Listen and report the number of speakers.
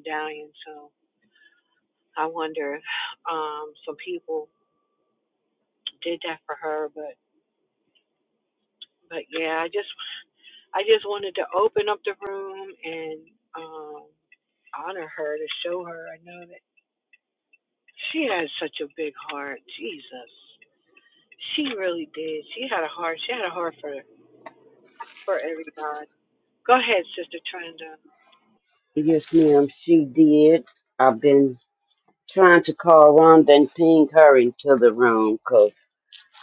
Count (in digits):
2